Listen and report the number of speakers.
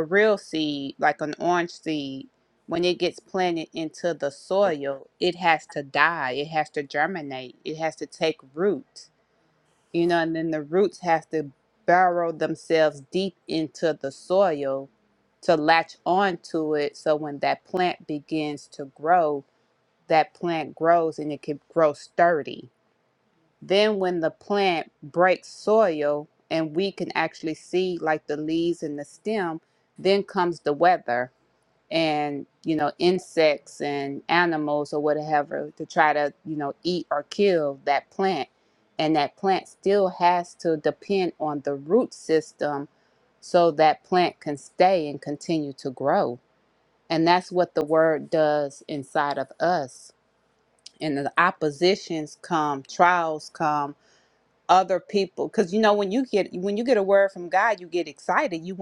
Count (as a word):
one